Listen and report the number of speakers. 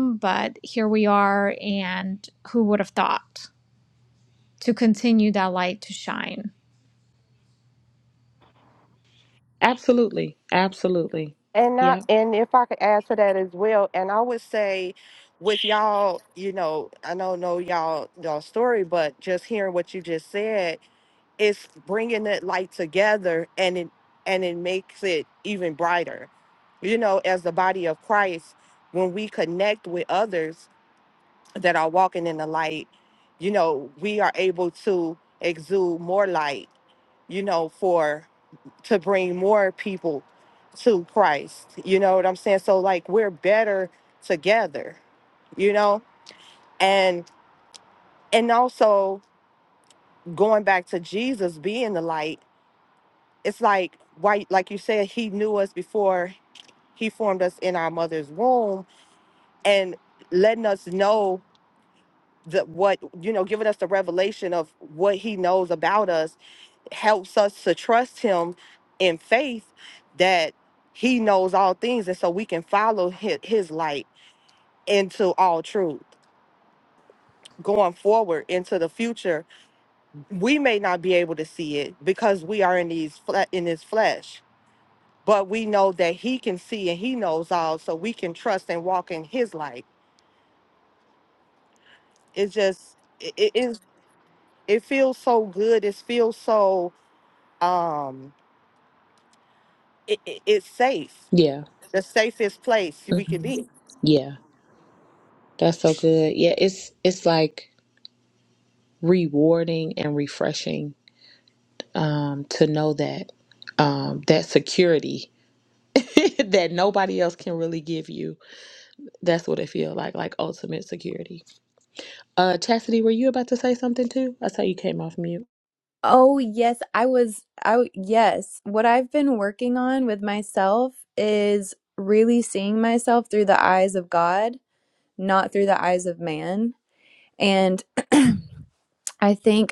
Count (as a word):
four